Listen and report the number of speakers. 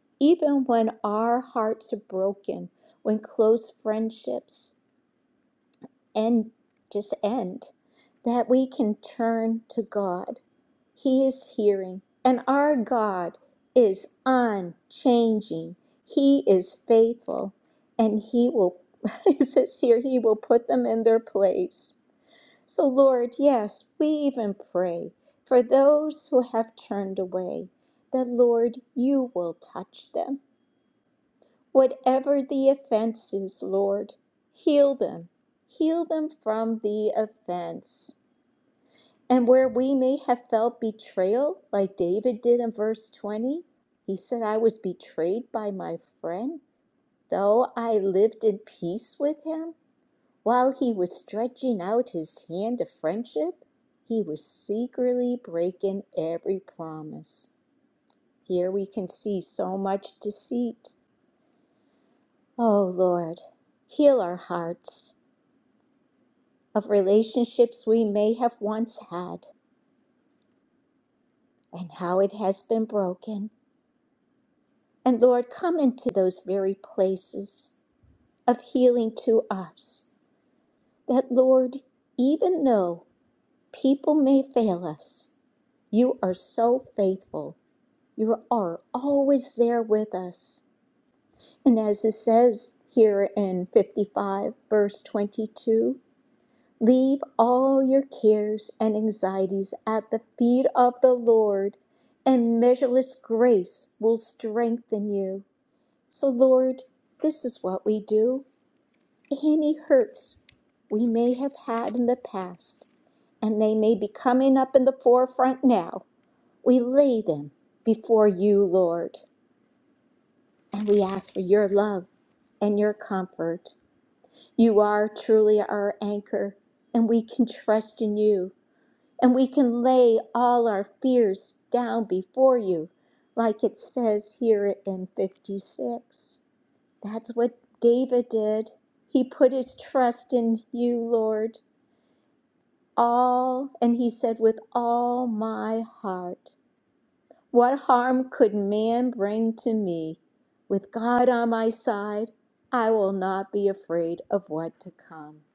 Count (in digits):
1